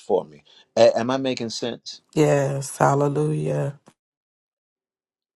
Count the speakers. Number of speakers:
2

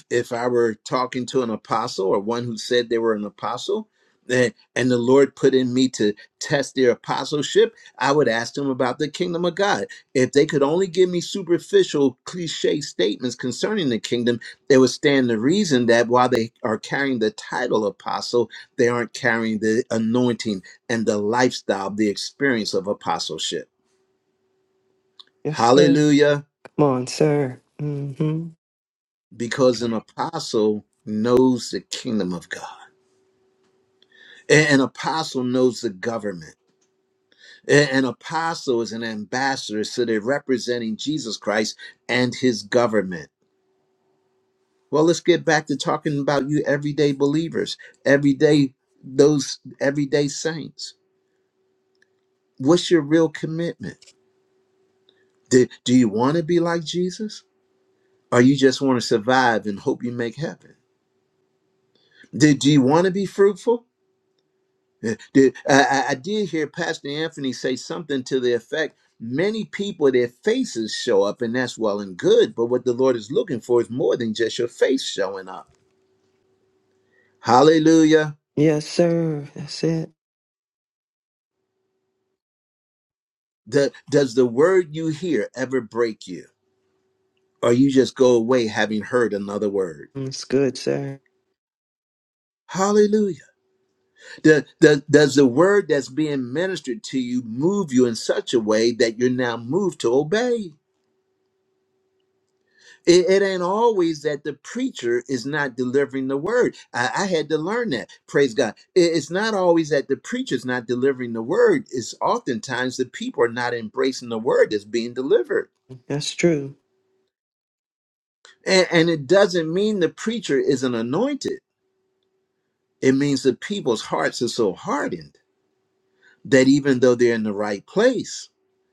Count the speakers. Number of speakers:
2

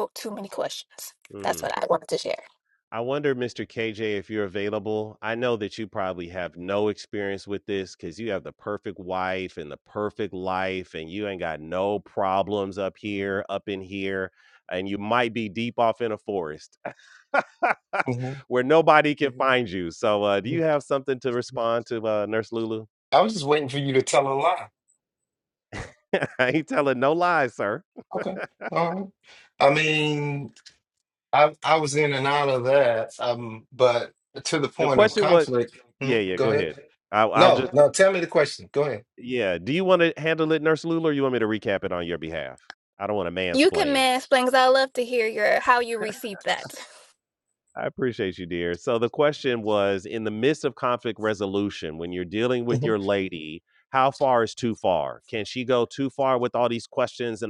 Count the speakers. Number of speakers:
3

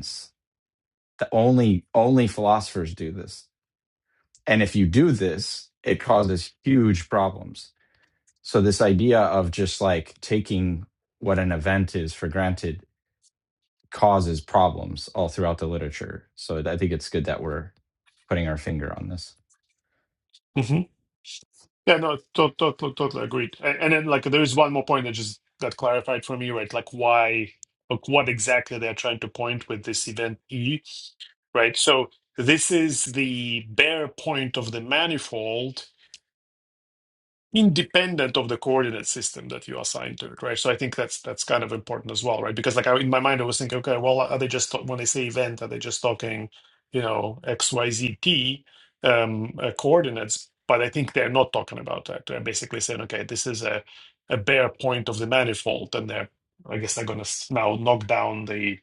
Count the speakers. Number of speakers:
2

